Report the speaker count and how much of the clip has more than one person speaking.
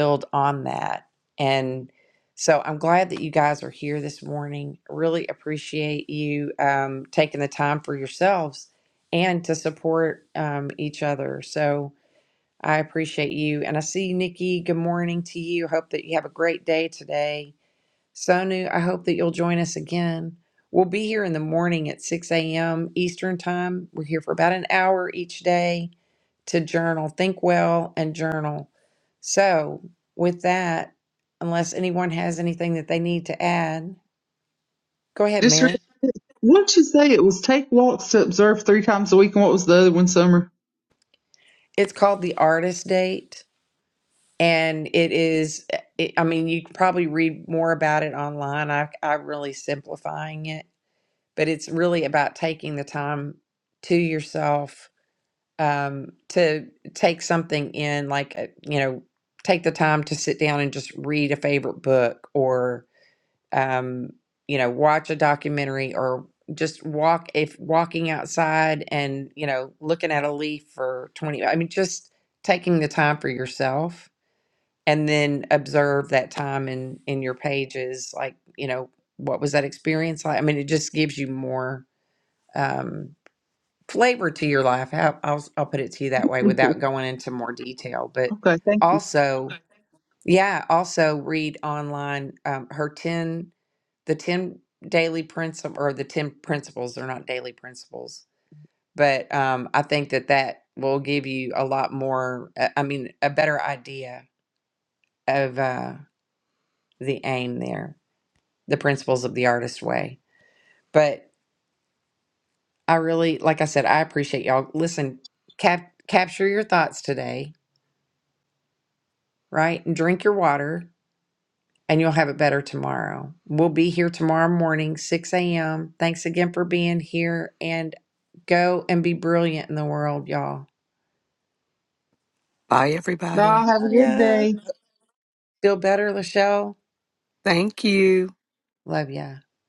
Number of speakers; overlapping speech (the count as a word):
three, about 1%